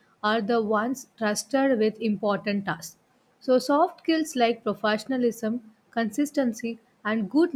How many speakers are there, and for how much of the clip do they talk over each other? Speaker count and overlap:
1, no overlap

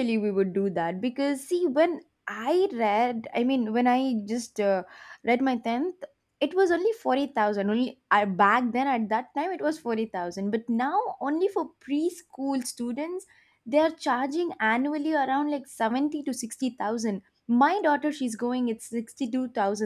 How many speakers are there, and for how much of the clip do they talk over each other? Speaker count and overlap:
1, no overlap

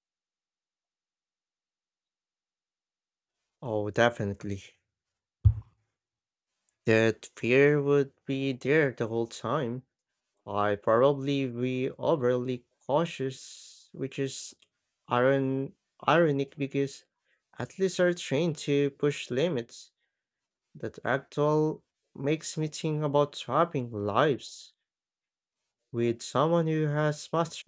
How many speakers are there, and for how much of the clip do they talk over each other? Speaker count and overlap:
1, no overlap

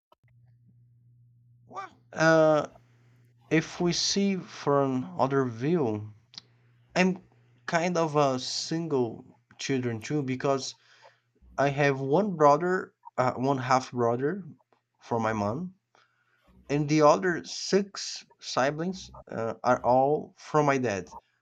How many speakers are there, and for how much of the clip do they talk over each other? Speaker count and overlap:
1, no overlap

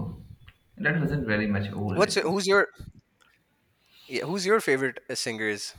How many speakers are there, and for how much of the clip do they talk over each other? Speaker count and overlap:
2, about 6%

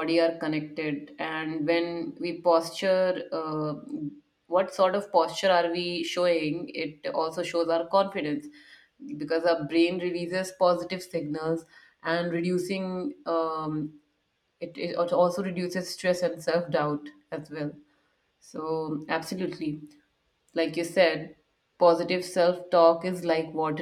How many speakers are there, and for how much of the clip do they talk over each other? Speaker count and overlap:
1, no overlap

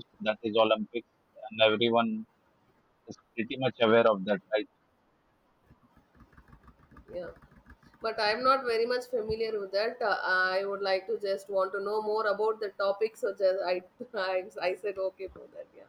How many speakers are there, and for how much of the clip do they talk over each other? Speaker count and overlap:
2, no overlap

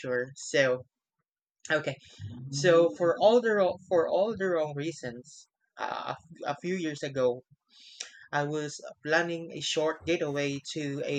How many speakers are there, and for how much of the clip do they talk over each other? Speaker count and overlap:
1, no overlap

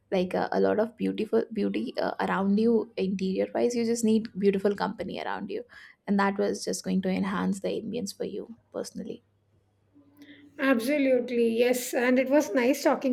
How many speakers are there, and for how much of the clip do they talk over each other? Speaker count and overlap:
2, no overlap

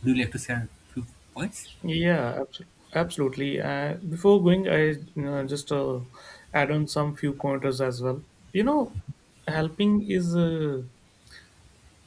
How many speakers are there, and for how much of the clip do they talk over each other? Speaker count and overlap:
2, no overlap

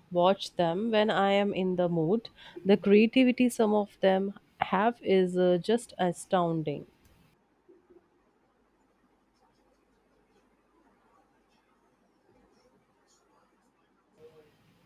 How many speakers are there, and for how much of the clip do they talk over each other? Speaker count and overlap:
1, no overlap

